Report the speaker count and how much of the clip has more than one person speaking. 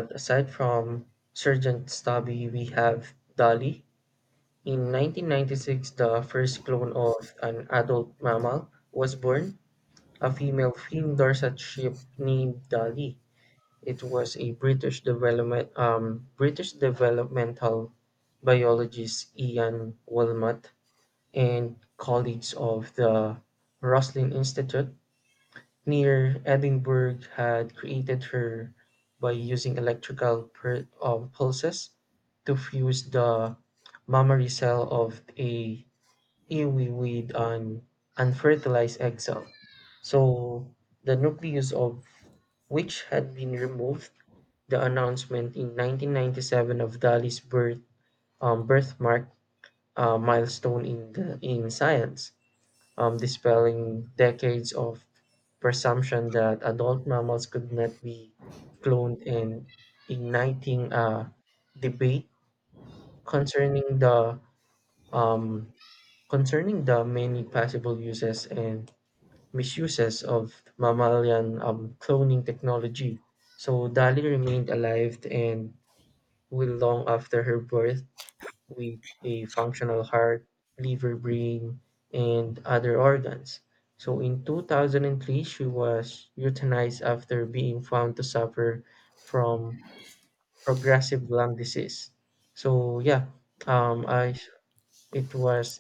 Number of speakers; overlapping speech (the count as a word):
one, no overlap